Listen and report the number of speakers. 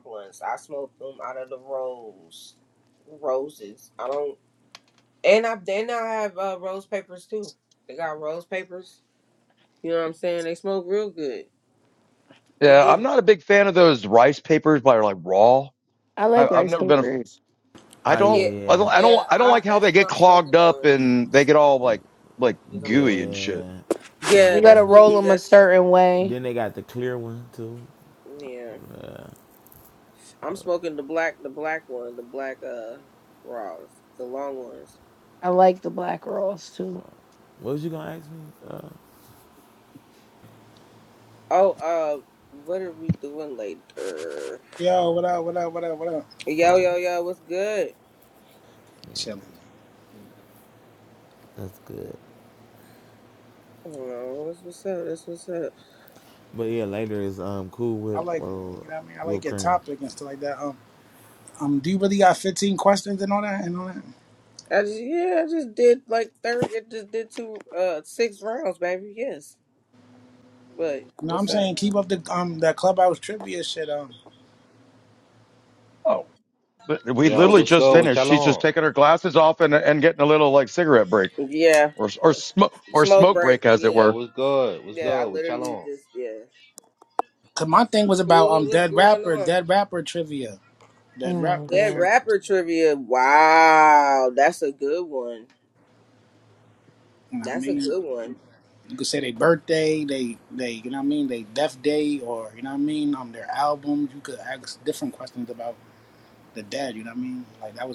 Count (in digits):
6